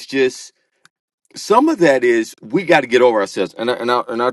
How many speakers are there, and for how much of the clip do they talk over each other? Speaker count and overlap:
one, no overlap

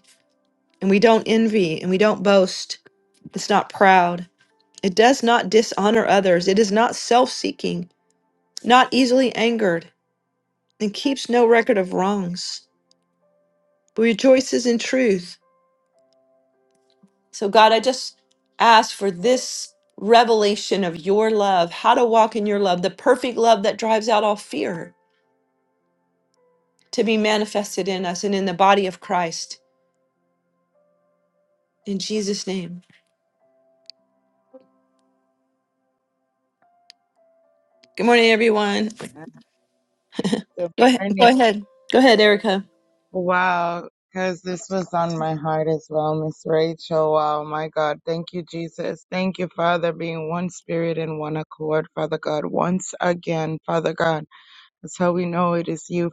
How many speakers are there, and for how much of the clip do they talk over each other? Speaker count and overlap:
two, about 1%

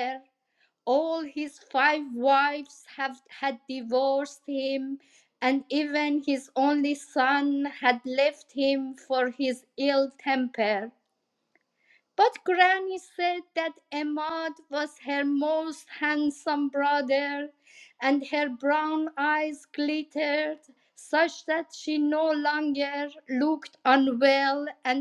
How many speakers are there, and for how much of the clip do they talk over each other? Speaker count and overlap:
one, no overlap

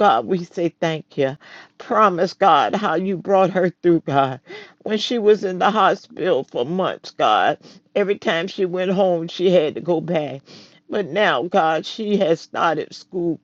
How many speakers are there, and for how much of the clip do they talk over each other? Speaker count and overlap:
one, no overlap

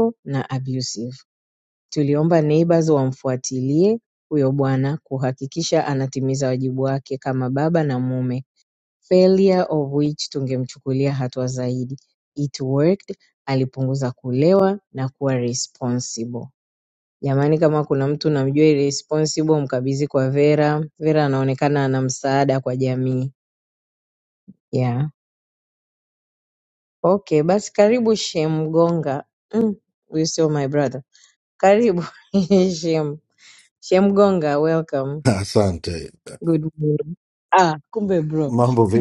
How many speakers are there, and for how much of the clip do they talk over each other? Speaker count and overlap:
two, under 1%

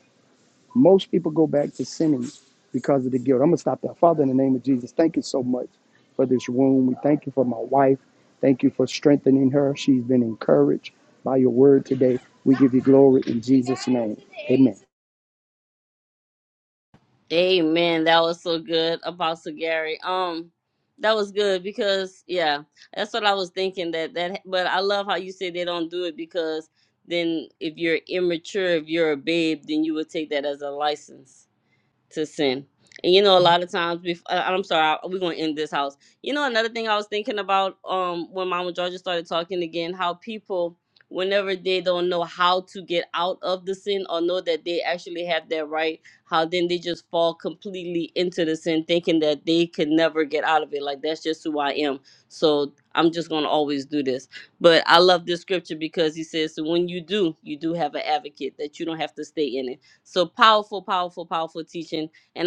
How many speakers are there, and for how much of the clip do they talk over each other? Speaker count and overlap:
two, no overlap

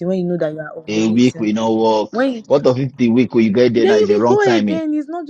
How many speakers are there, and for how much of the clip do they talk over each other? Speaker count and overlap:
two, about 35%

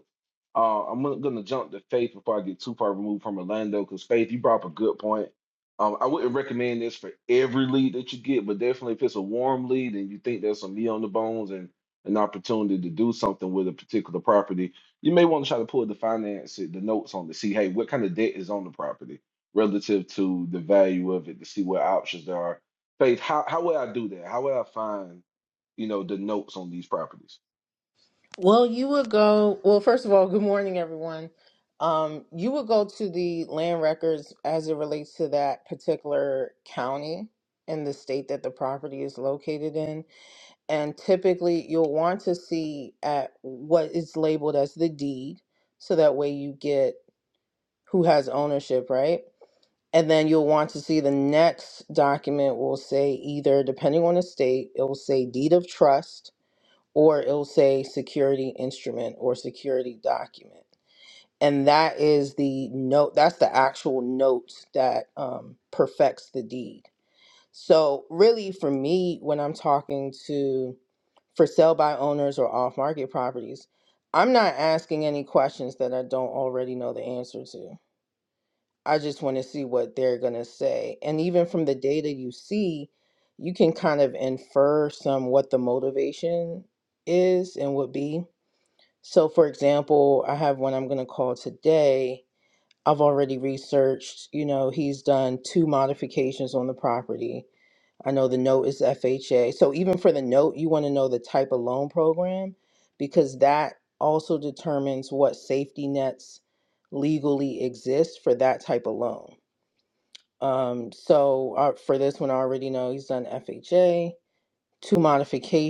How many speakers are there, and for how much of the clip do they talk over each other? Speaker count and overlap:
two, no overlap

